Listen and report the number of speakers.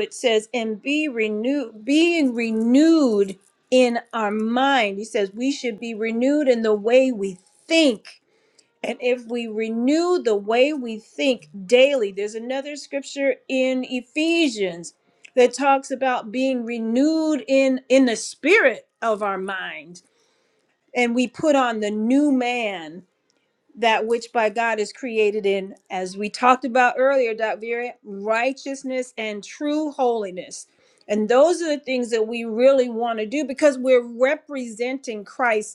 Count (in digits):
1